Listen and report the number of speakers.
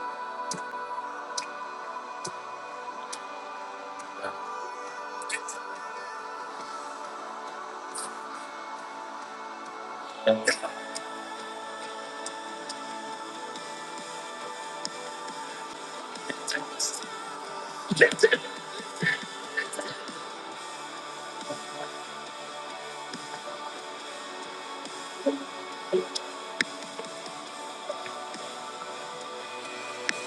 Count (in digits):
0